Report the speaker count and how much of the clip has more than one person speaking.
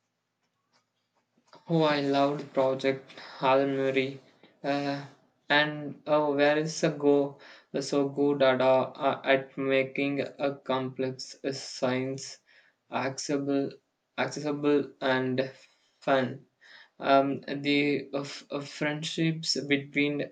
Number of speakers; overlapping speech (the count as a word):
one, no overlap